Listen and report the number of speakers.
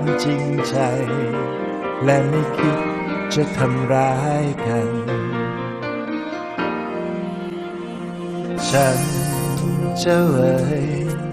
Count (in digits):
1